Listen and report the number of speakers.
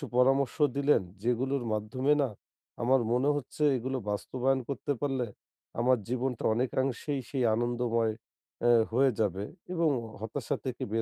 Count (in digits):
1